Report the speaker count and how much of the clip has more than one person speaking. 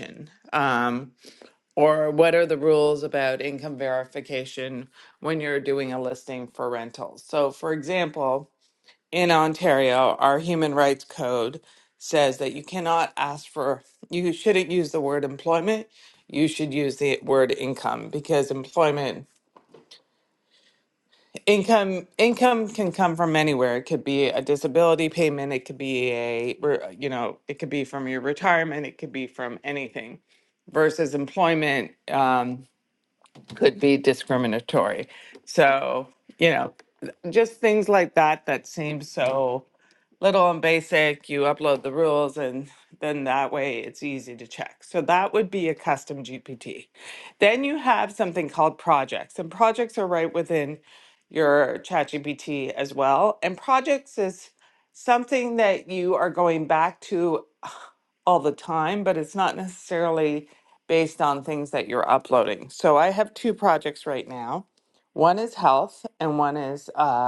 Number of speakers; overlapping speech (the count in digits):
1, no overlap